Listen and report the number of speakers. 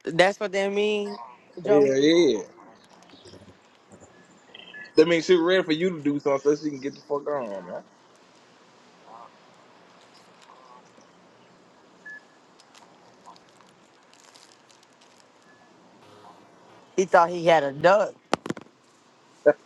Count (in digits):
2